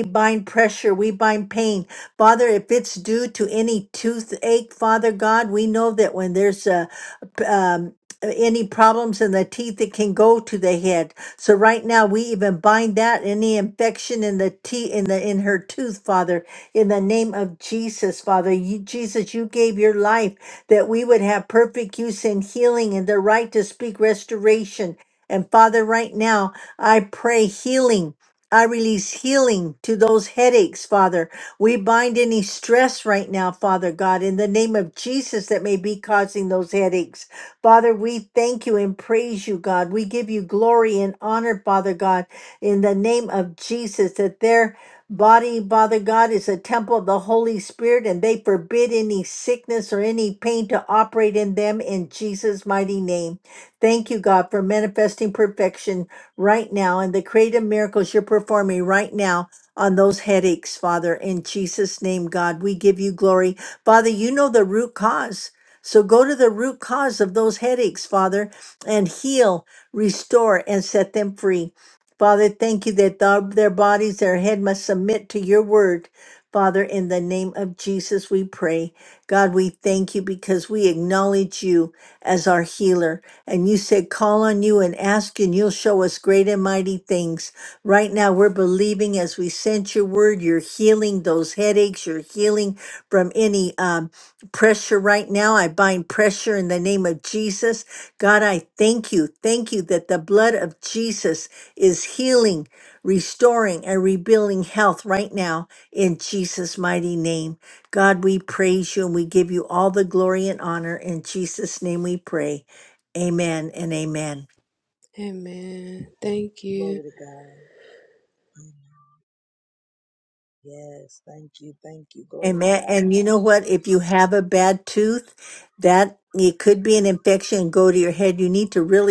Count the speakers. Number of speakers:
three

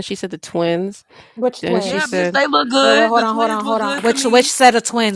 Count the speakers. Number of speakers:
three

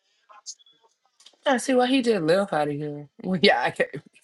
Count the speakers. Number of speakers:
one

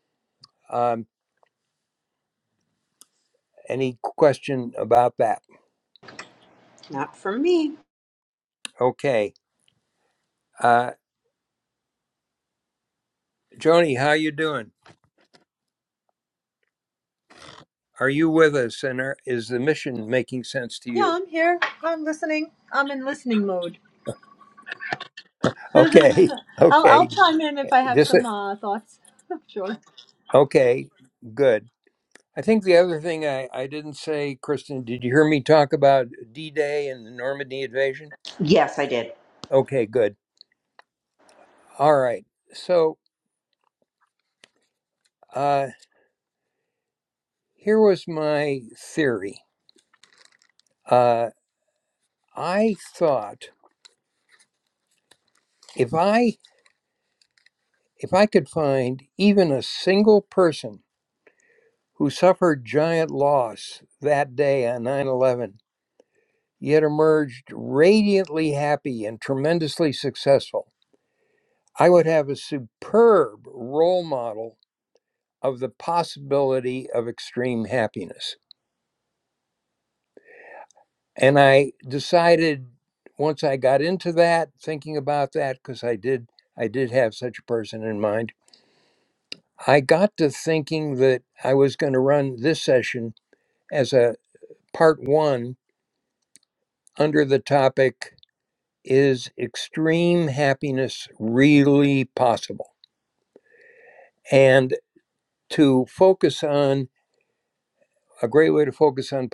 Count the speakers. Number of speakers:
three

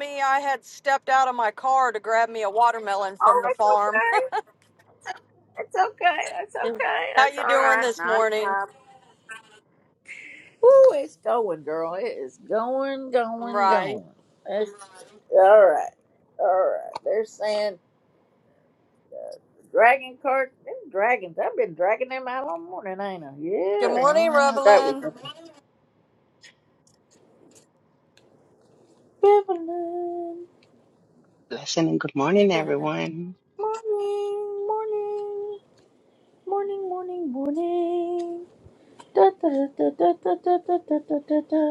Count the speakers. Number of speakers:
three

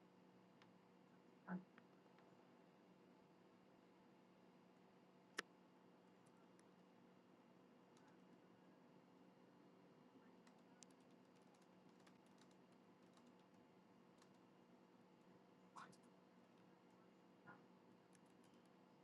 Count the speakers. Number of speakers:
zero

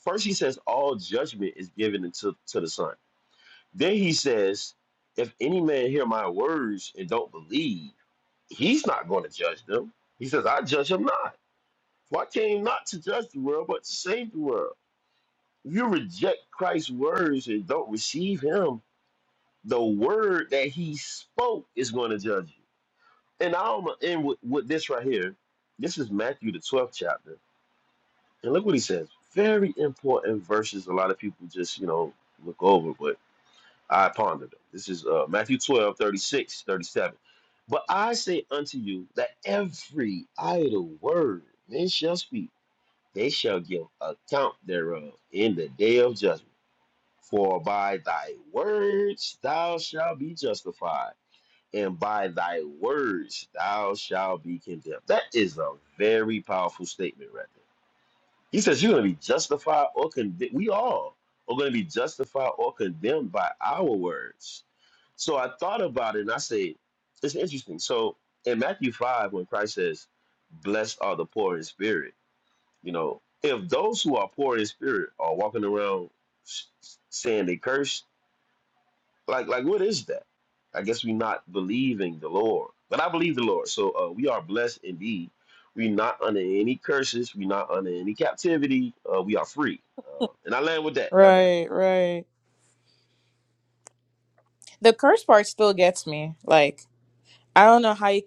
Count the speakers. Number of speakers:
two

